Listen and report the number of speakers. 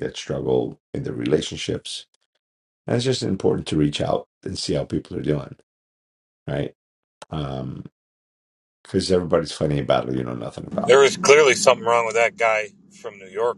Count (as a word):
two